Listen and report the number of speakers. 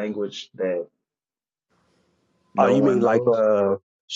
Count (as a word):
two